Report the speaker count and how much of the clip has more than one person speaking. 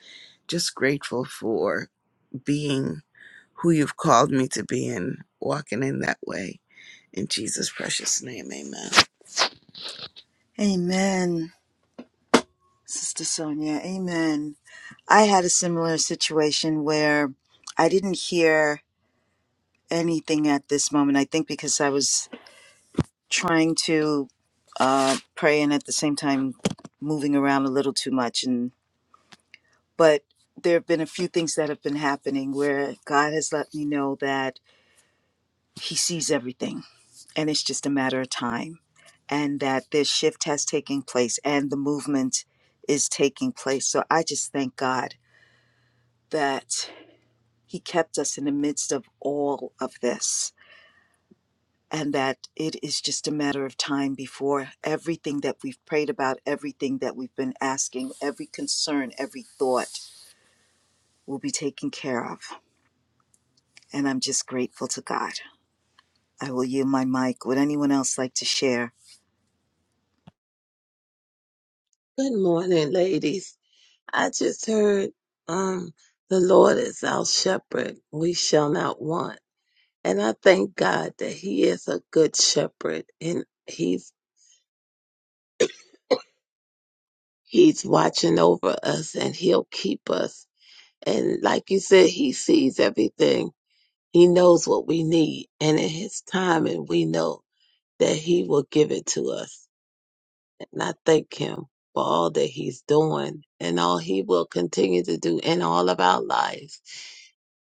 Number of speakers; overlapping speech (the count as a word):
three, no overlap